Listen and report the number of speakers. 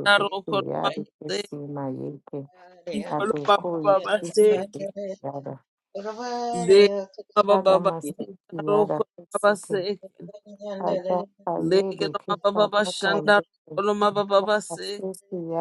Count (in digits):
3